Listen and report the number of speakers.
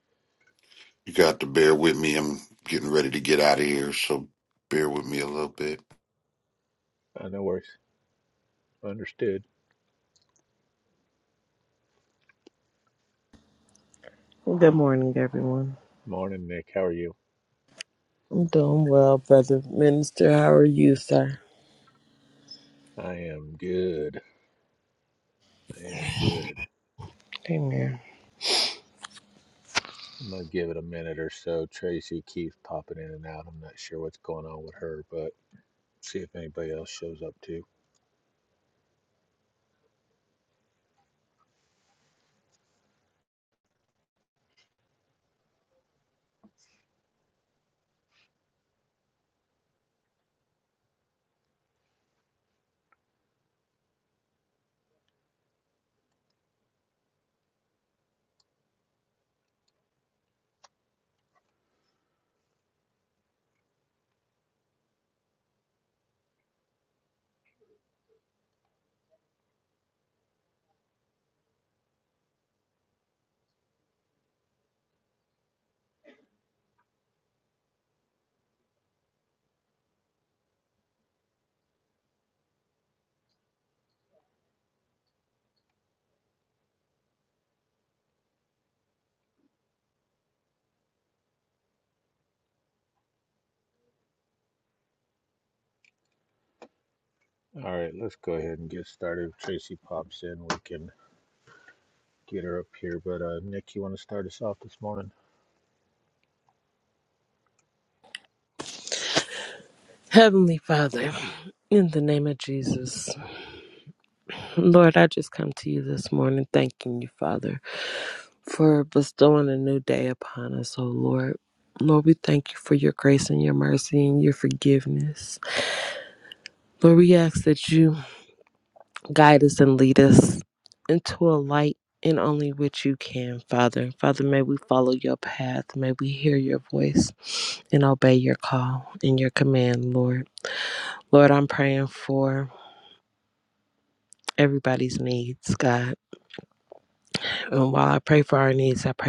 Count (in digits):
3